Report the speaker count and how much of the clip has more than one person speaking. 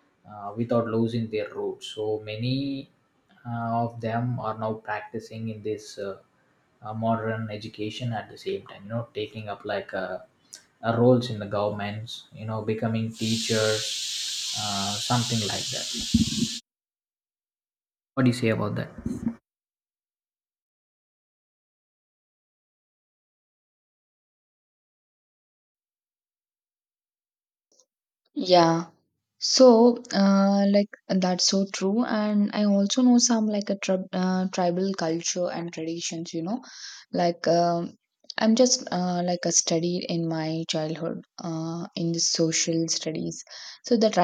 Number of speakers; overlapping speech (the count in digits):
2, no overlap